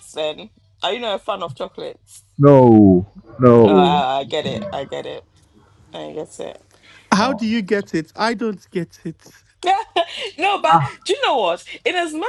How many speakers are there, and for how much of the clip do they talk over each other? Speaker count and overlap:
three, about 4%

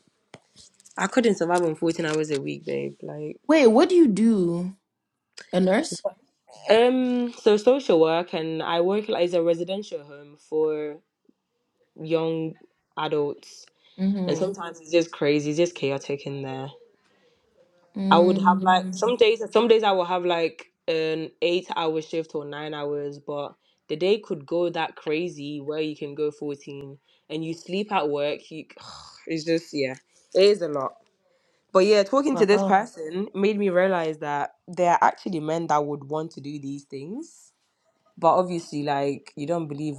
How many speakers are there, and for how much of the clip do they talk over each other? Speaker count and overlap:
two, about 4%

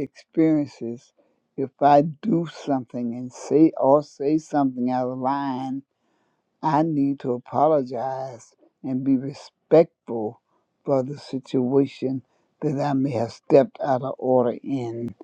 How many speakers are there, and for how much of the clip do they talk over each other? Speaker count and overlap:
one, no overlap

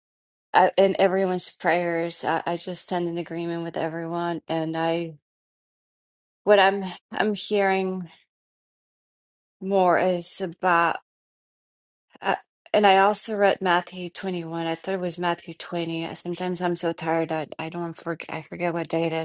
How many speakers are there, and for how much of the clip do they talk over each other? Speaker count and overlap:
one, no overlap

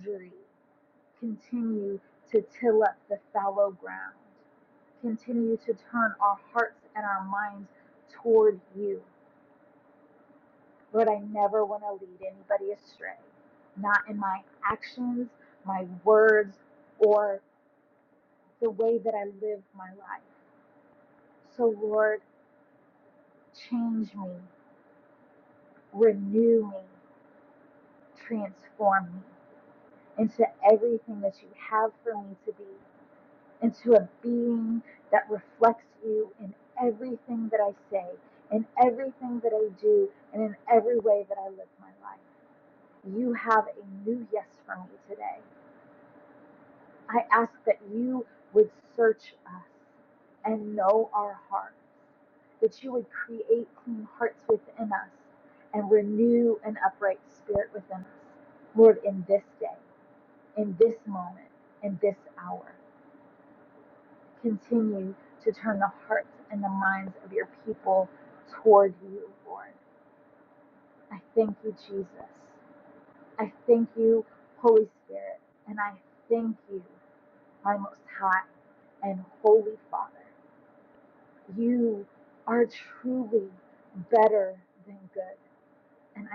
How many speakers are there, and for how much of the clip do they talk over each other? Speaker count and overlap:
one, no overlap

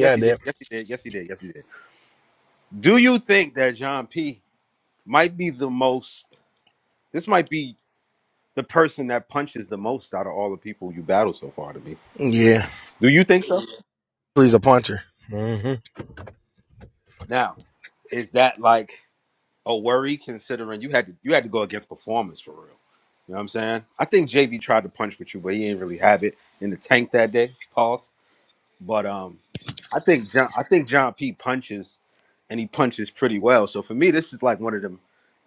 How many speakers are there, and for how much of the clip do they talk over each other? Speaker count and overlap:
two, about 1%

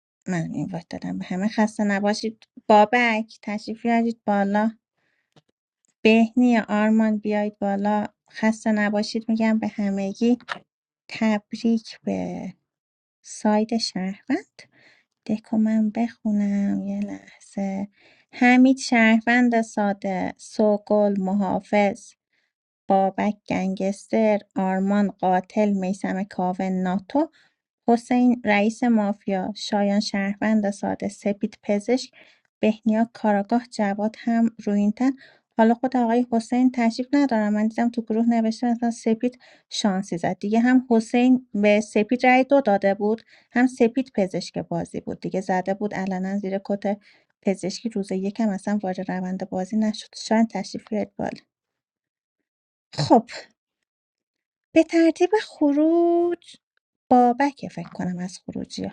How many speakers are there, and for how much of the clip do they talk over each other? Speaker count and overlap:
one, no overlap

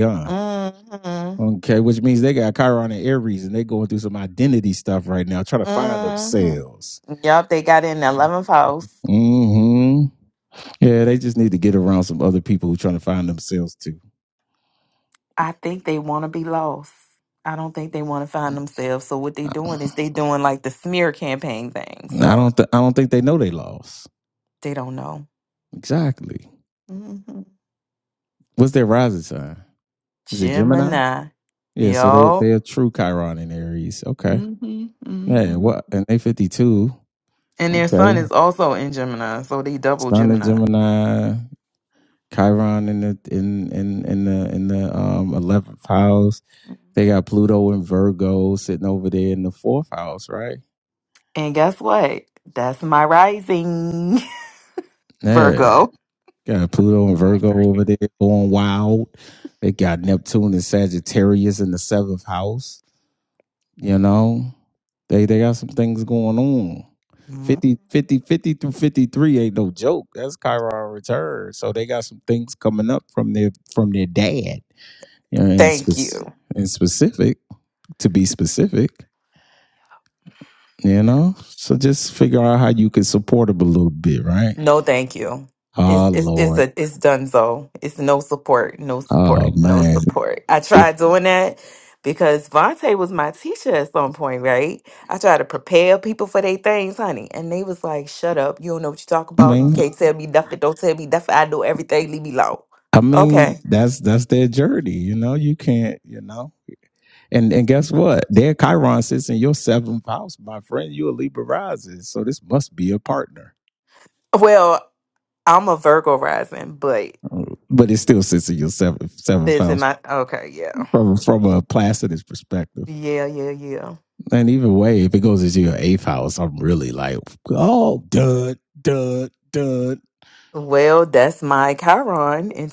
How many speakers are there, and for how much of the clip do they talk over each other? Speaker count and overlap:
two, about 6%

